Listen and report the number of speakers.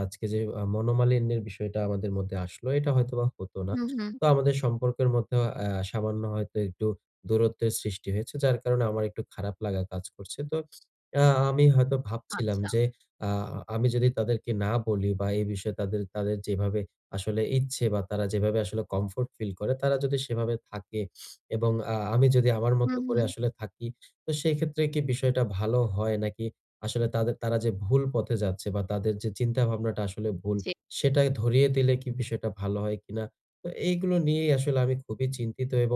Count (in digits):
2